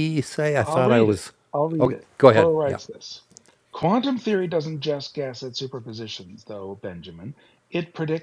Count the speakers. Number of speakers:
2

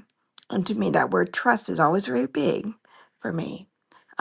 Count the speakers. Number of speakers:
1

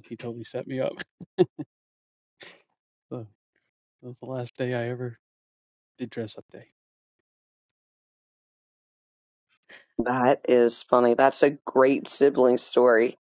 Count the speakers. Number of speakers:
2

